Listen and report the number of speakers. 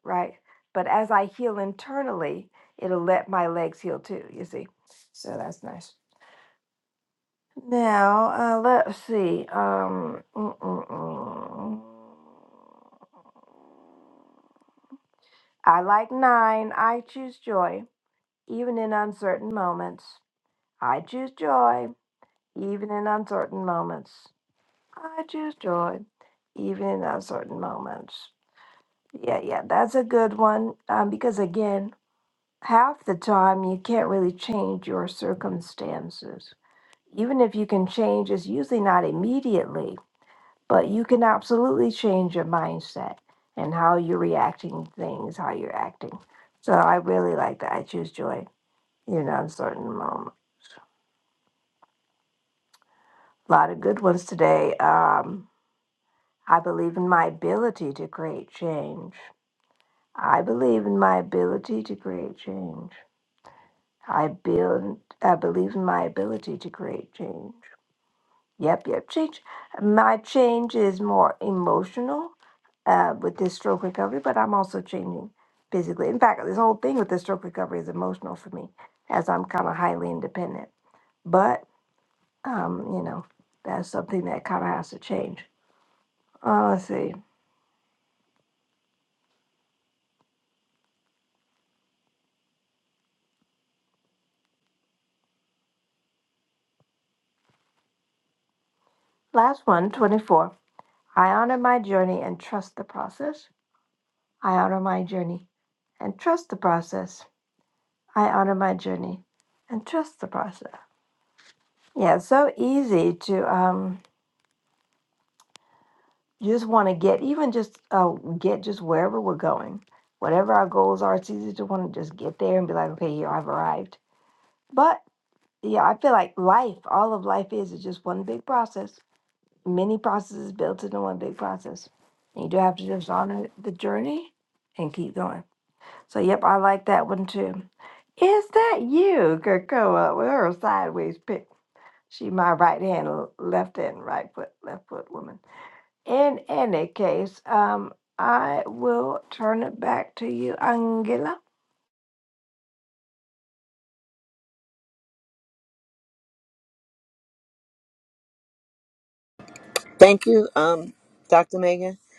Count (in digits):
2